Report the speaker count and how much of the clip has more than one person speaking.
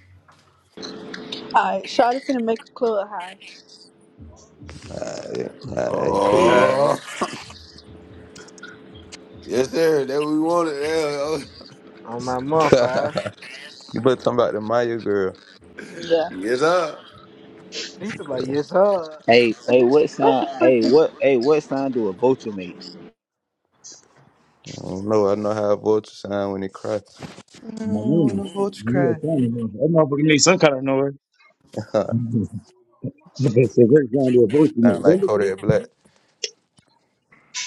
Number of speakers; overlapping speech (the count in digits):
6, about 9%